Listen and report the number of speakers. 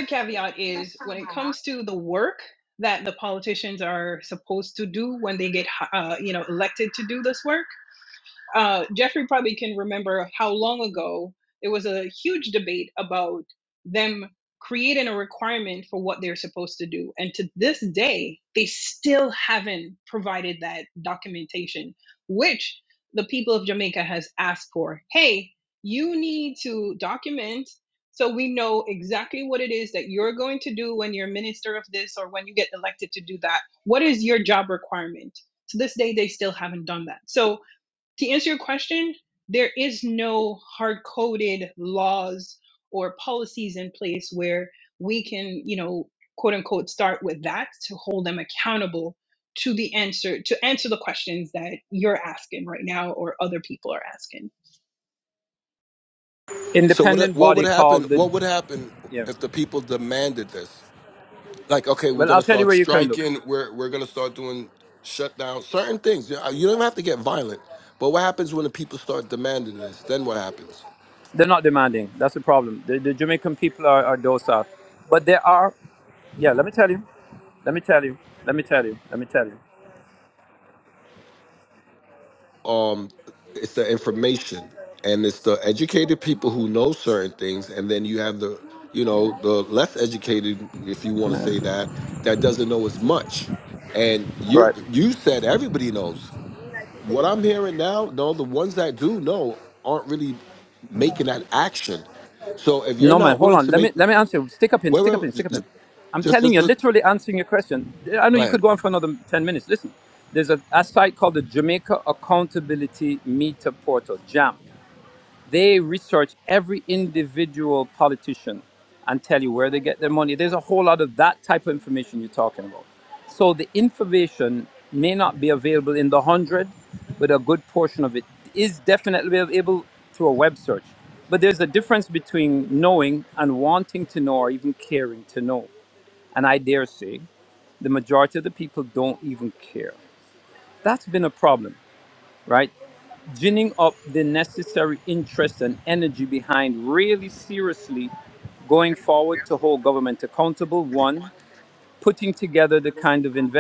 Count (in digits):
3